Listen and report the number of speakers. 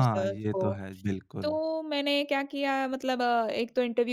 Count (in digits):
2